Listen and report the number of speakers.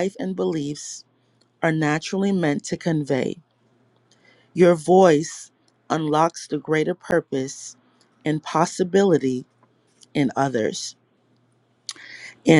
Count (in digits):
1